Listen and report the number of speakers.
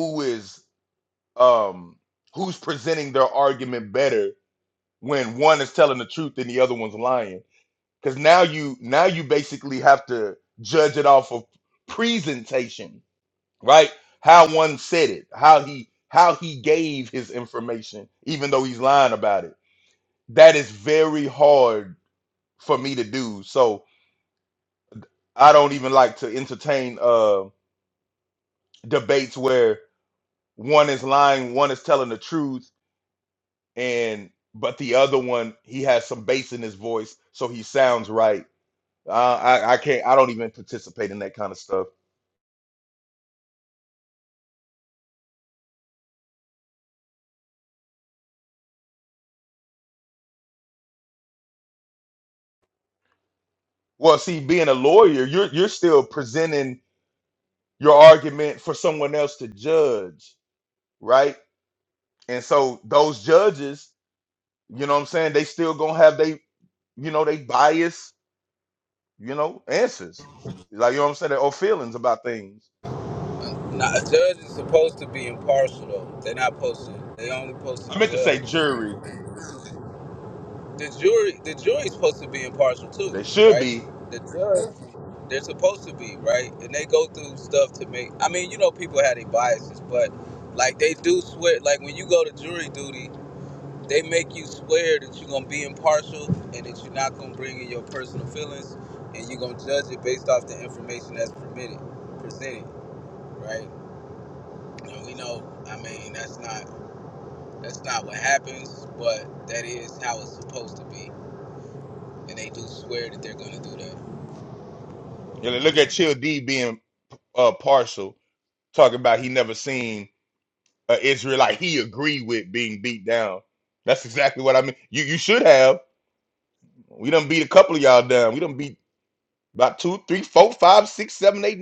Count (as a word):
two